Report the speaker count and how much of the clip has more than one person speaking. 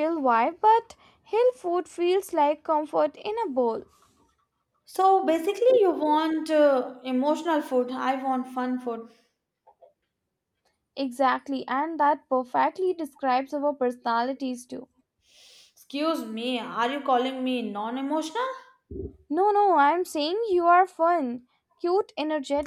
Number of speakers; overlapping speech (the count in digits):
2, no overlap